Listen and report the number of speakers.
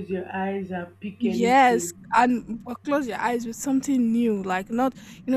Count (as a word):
two